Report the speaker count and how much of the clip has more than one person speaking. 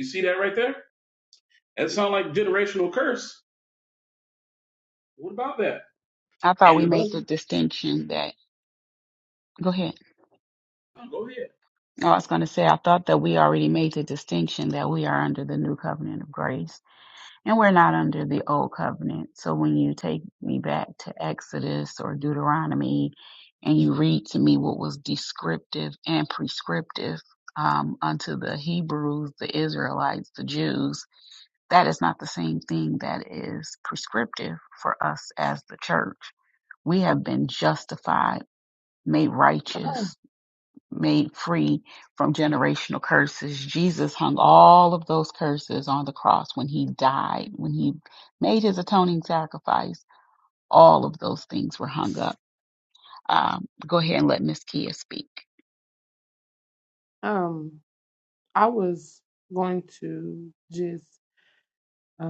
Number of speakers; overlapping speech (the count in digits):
3, about 1%